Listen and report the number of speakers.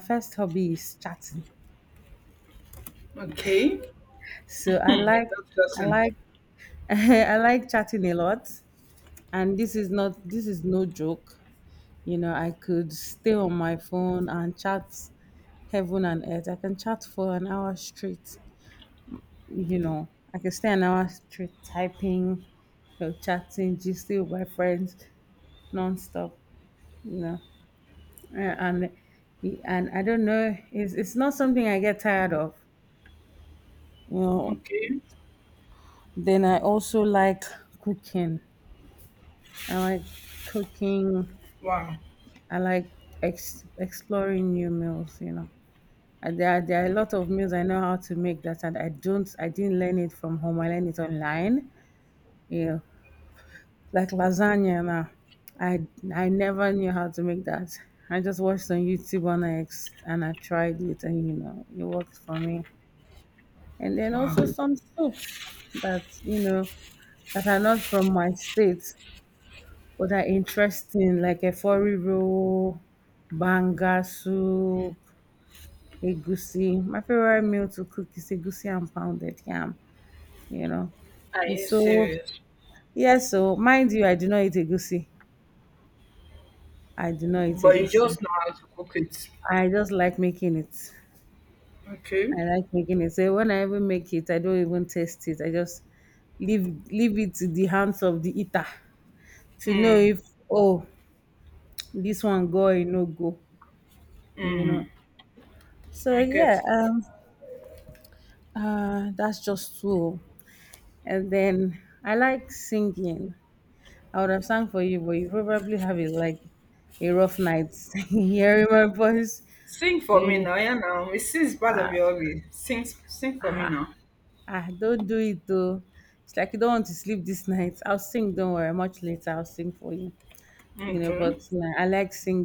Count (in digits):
2